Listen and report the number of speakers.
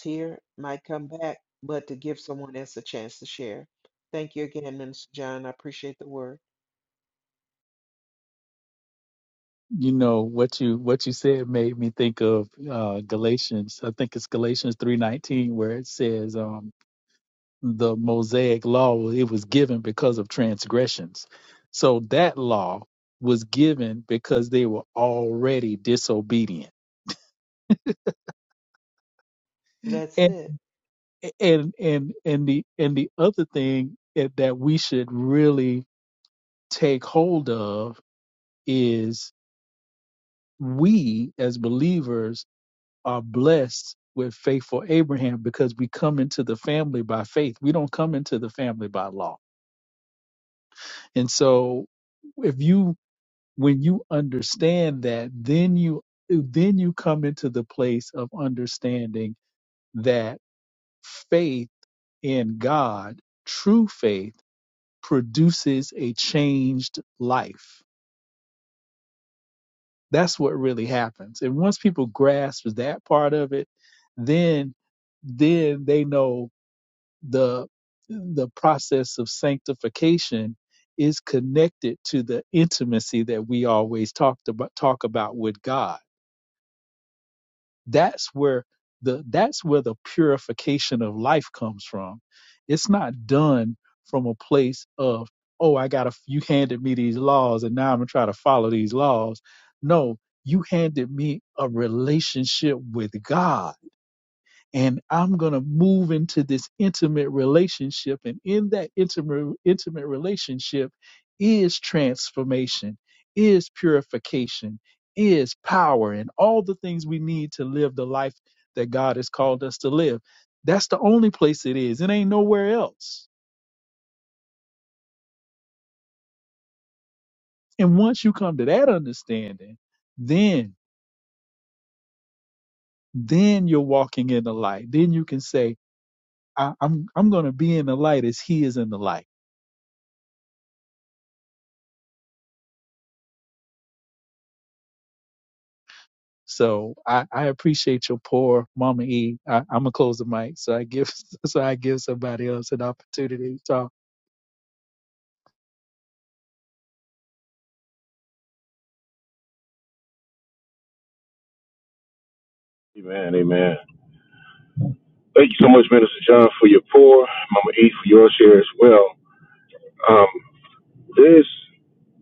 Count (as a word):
three